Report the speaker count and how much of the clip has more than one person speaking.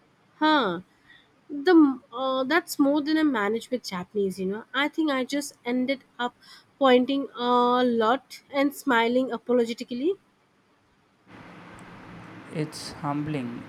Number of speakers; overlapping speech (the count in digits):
2, no overlap